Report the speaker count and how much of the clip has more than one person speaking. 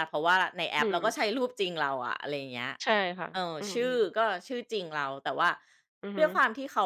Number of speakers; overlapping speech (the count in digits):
2, about 15%